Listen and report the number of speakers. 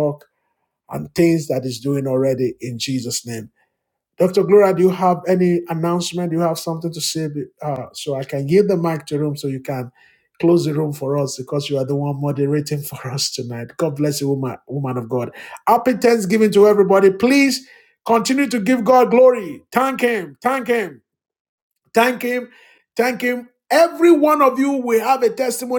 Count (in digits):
1